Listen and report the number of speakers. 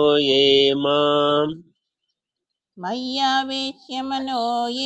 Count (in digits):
2